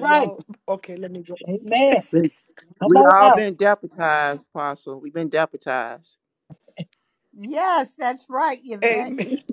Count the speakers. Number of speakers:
four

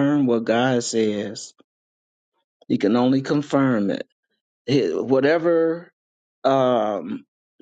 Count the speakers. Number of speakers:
one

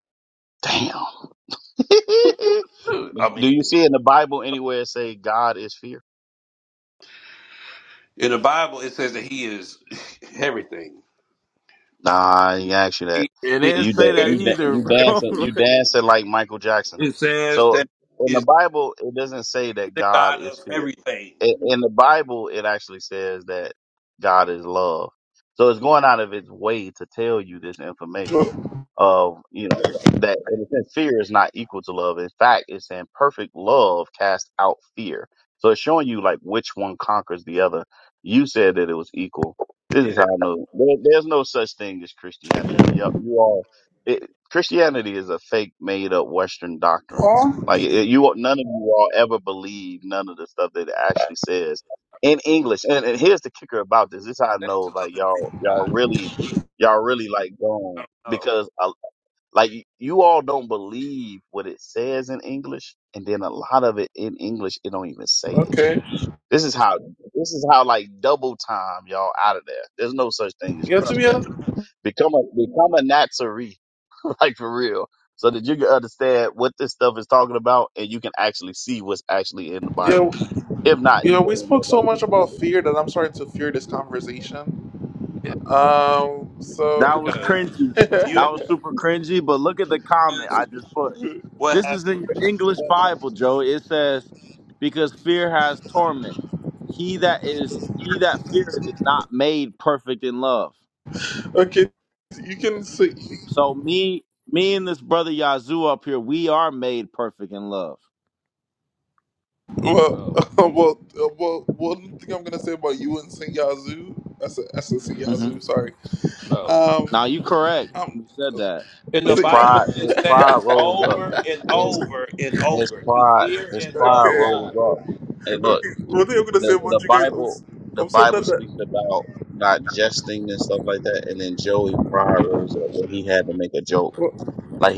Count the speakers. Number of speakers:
four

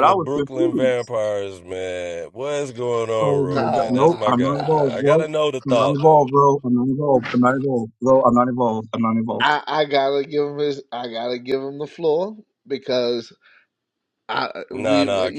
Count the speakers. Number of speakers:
three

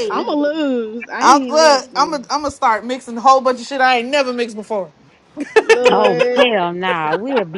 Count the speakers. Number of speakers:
three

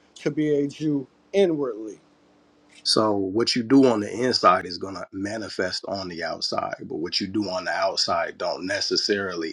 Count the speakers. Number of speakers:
two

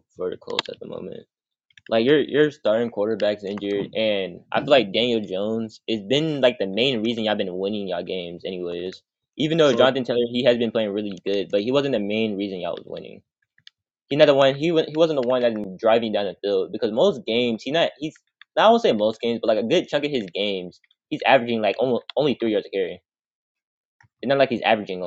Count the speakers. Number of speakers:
one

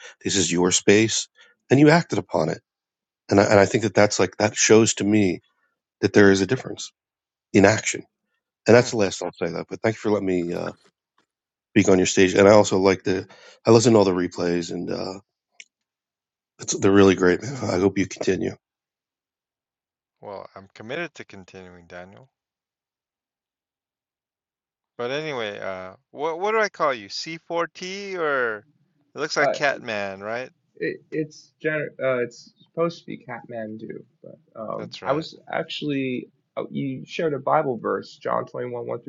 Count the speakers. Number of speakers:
three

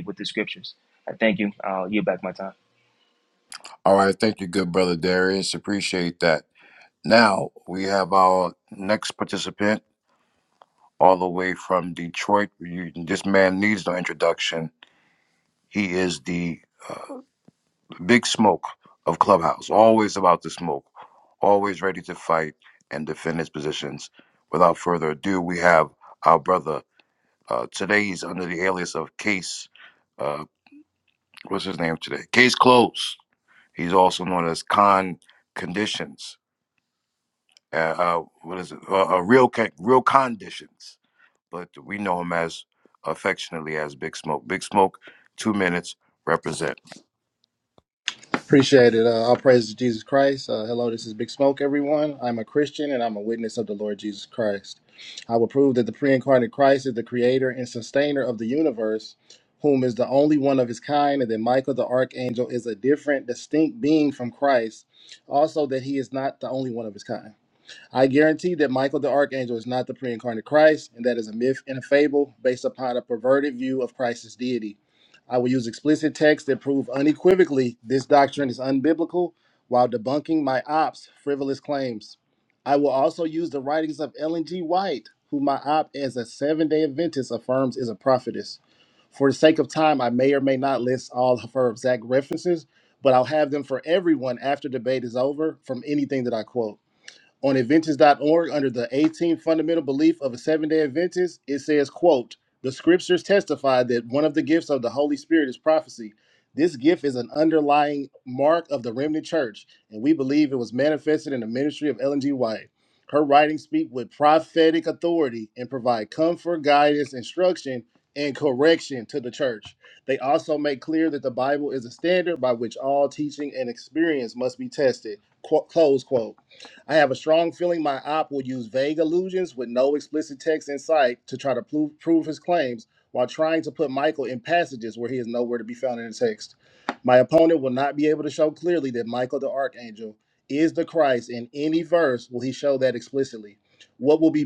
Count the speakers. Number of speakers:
three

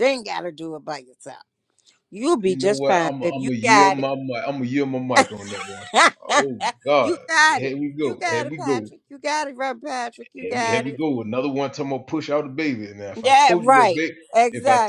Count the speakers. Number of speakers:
two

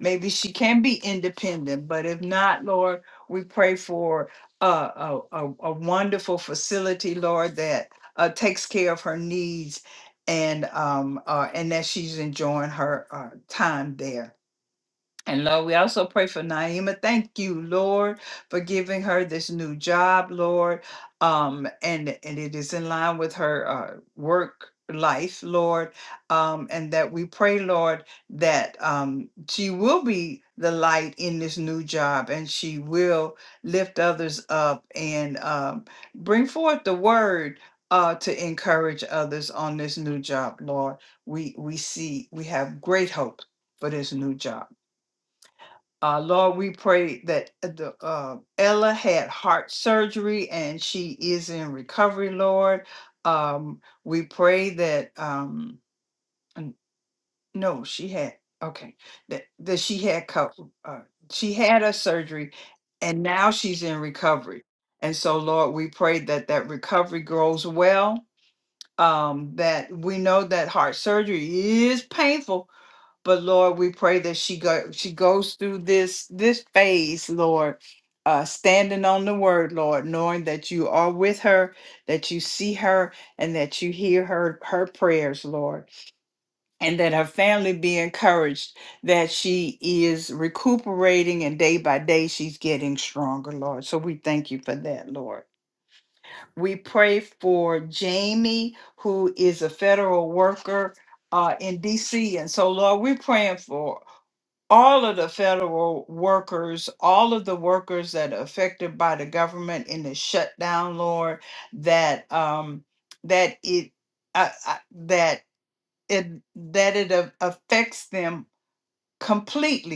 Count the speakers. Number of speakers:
one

